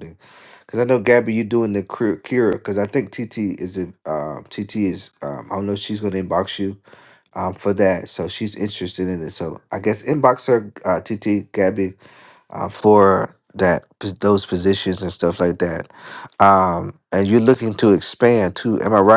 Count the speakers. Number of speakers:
1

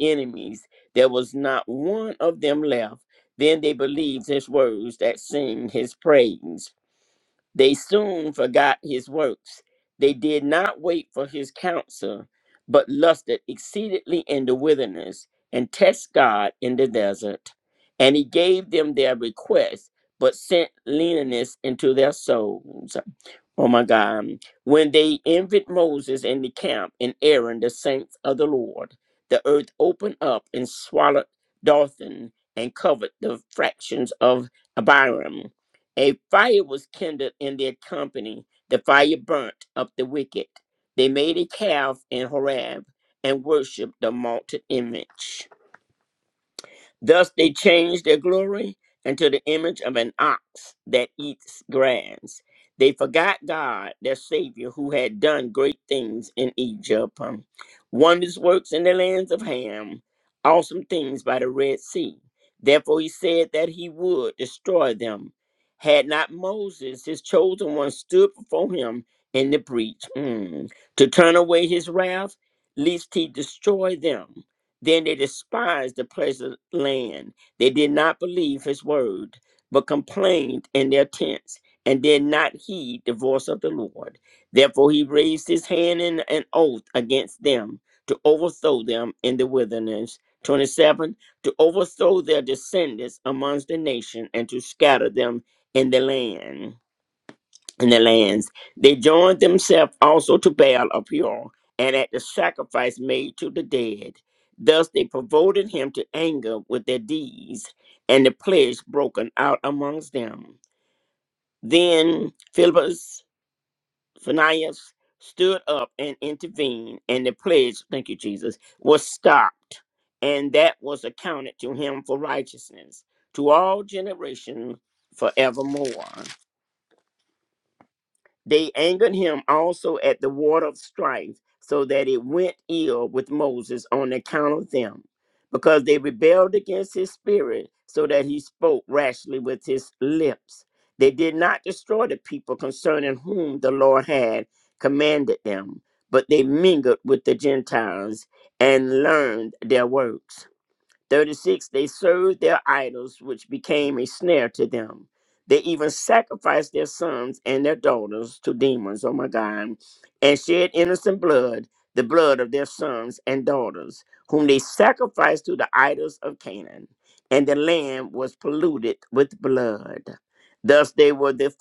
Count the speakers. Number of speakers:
1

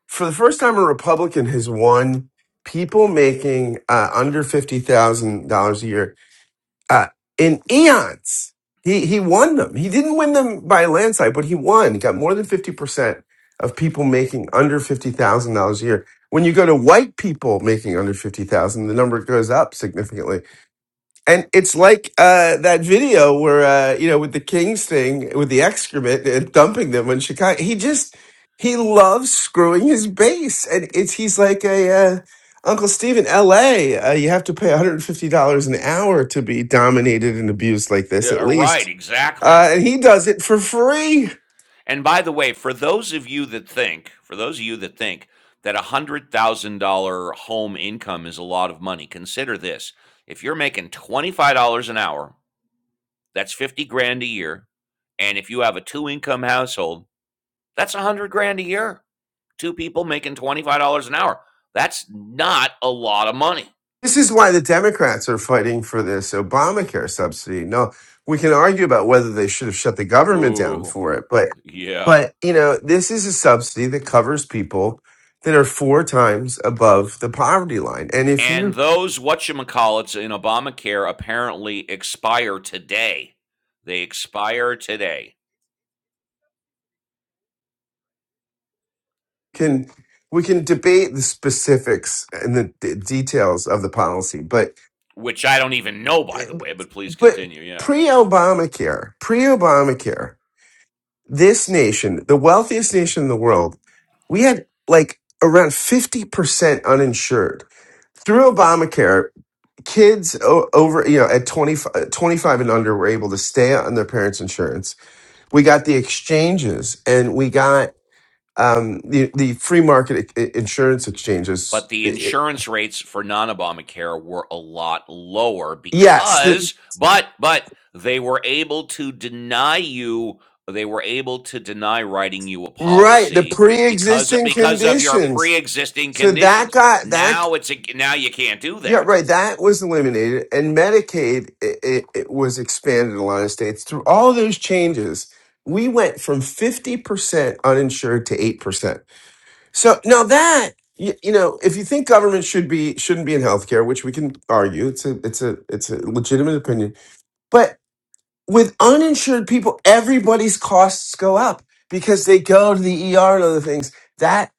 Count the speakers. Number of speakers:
2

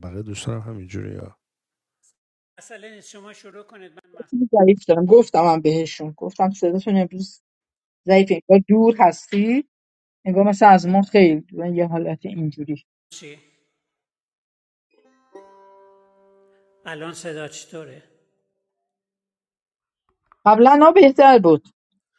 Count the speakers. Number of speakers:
3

